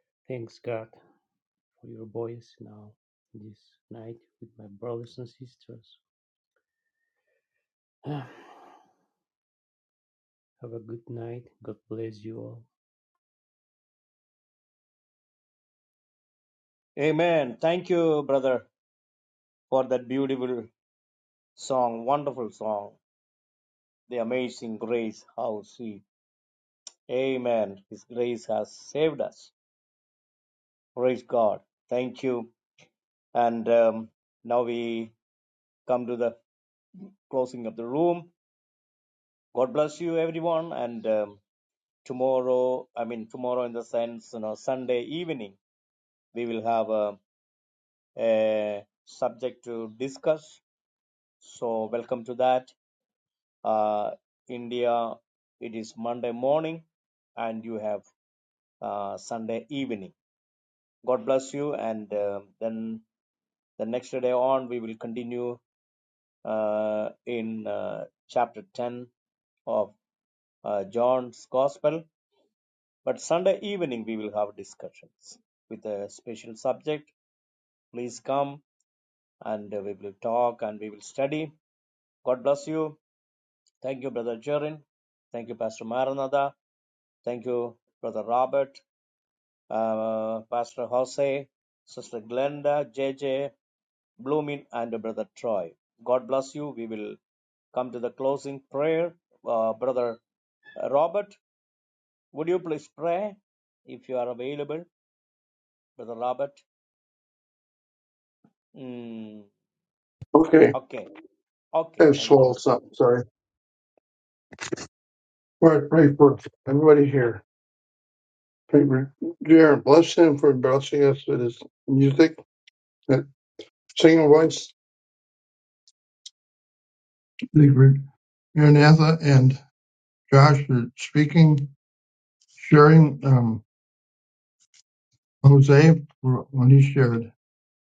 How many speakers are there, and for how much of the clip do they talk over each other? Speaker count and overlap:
3, about 1%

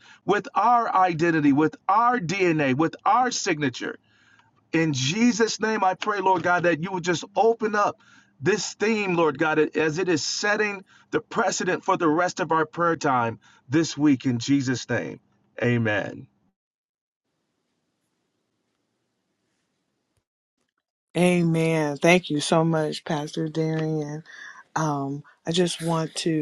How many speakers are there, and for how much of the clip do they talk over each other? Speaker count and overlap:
2, no overlap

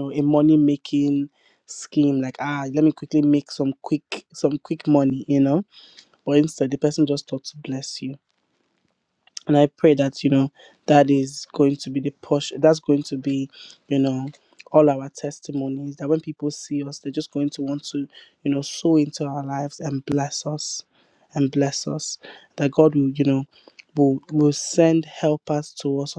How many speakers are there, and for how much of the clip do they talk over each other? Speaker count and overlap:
1, no overlap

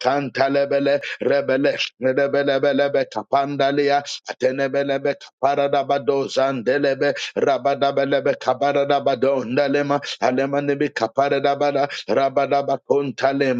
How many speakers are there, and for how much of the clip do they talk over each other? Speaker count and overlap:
1, no overlap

